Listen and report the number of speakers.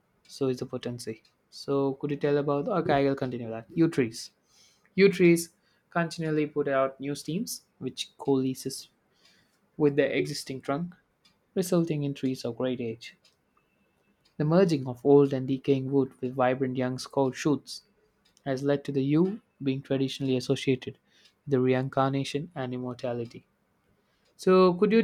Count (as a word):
one